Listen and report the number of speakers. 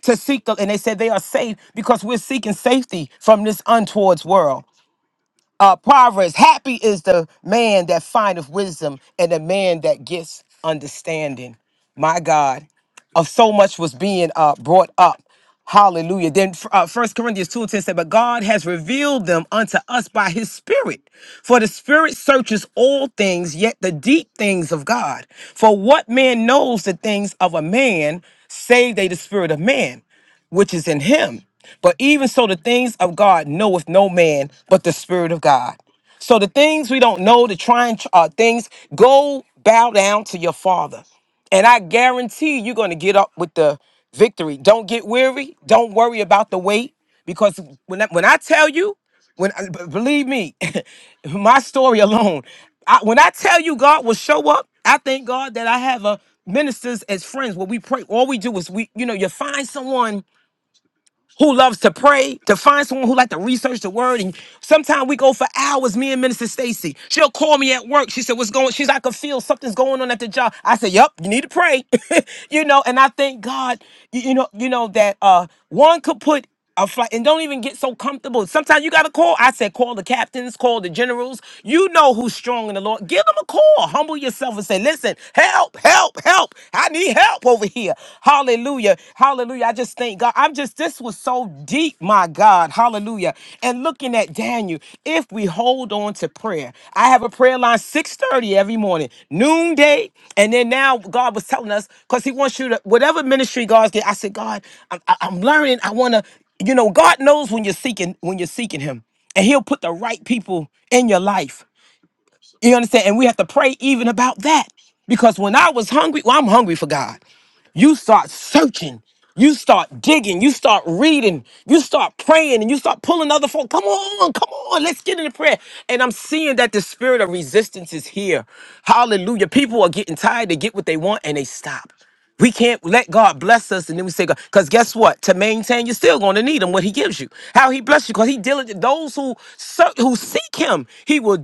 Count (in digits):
1